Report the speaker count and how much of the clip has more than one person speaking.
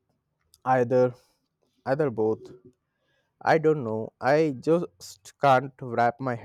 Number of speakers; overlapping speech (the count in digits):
1, no overlap